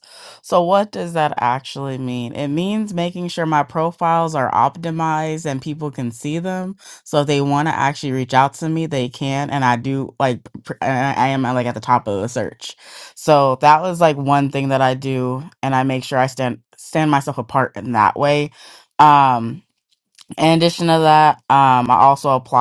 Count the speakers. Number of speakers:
1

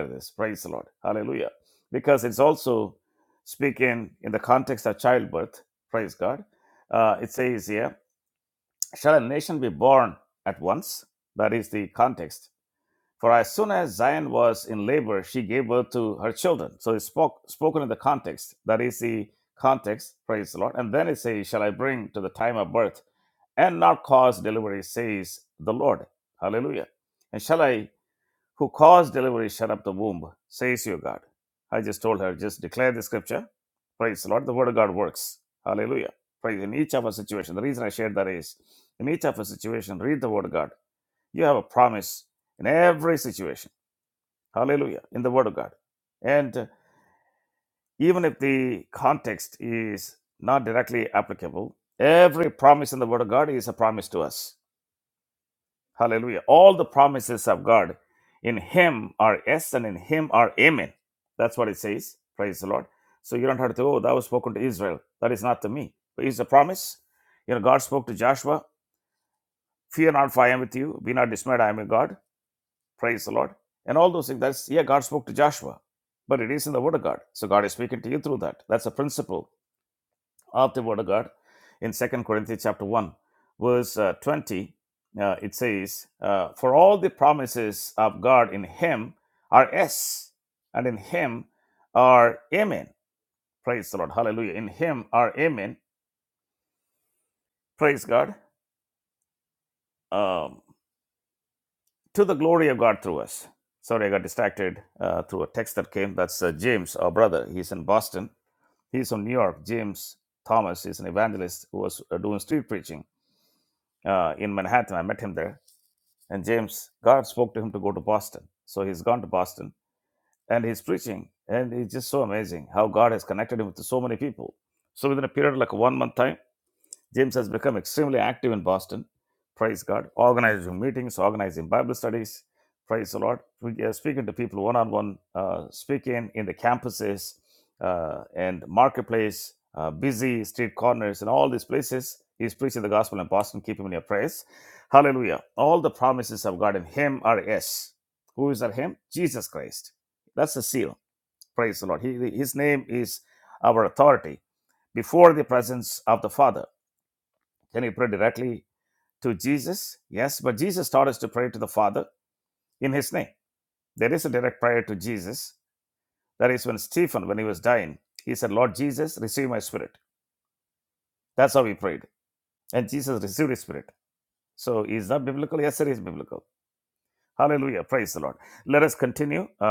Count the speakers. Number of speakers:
1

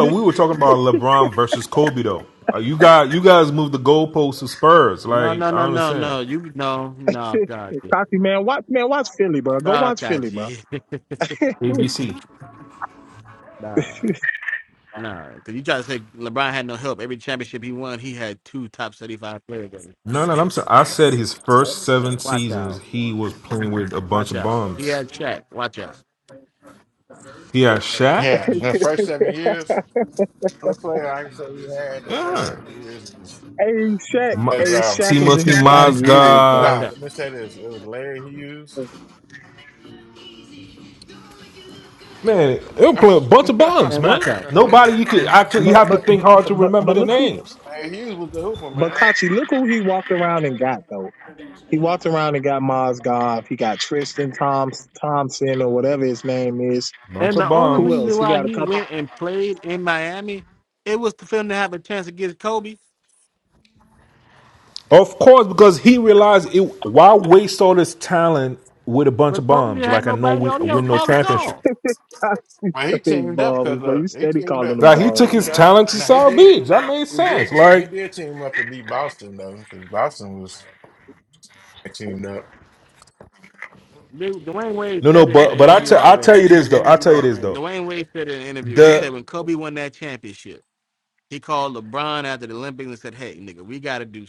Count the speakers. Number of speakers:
4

